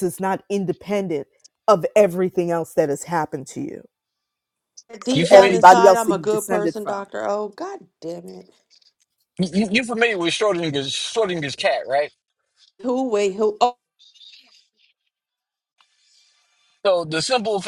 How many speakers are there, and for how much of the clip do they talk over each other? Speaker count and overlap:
3, about 11%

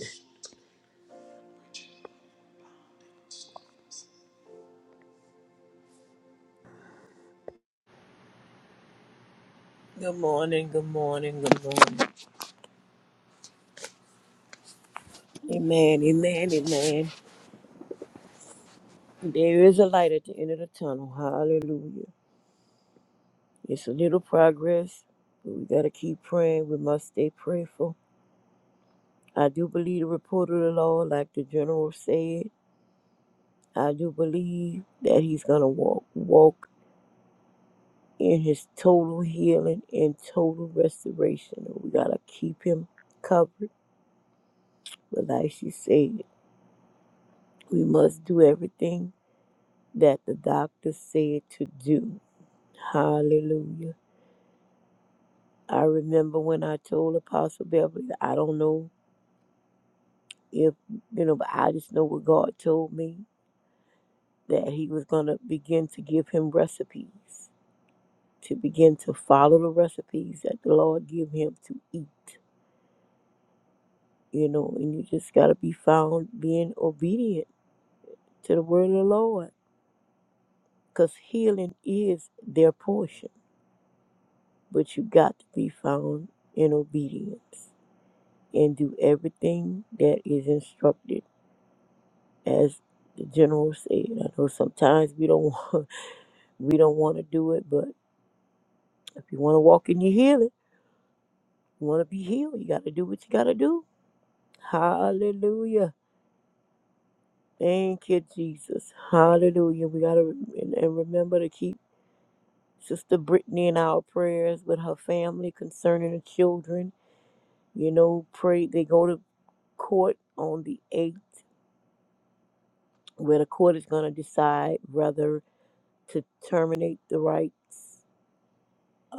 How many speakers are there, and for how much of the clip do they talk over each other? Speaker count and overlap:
1, no overlap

